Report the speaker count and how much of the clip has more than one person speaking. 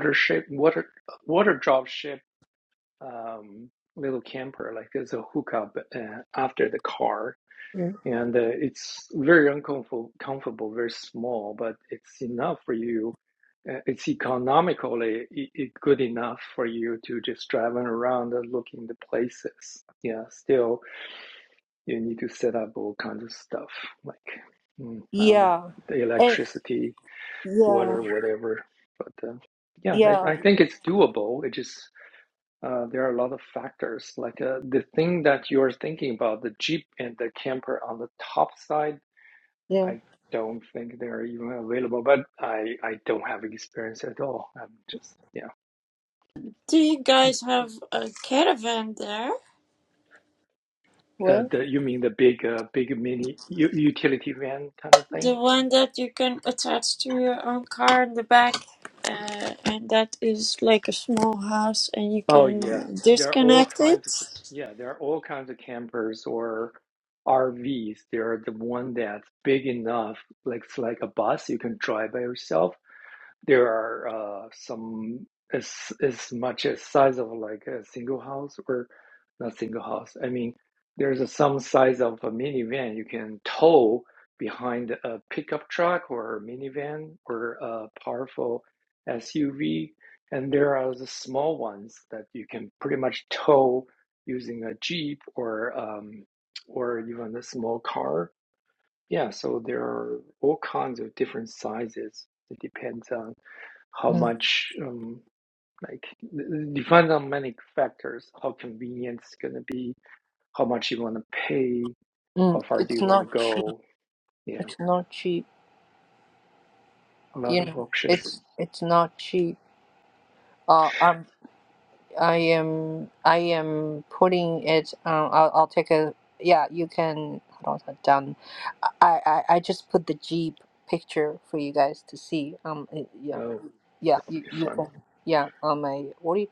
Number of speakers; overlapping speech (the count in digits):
3, about 5%